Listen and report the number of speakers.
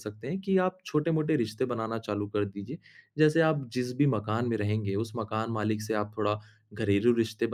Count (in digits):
1